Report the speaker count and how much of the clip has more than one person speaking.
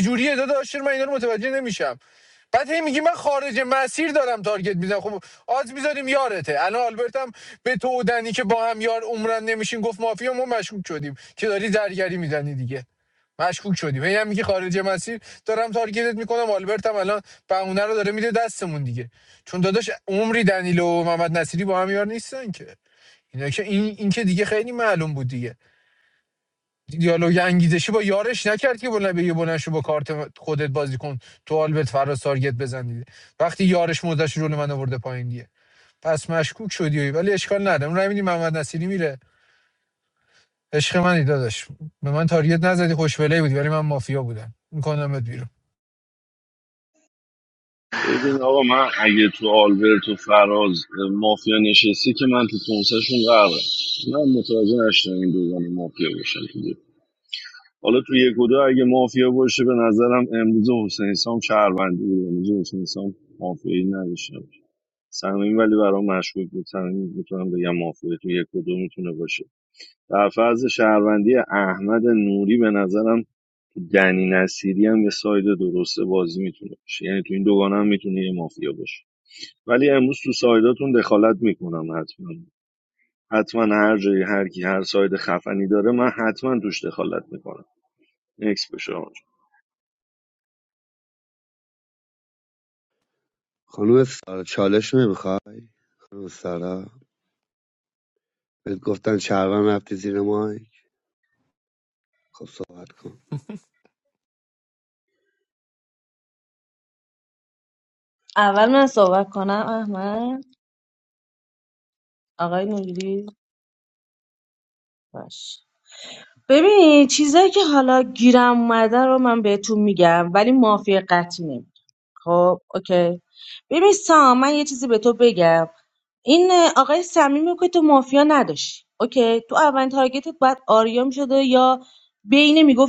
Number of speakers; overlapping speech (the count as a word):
four, no overlap